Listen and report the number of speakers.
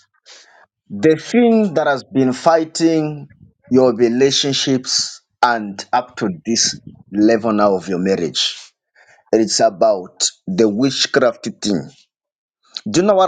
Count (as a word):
one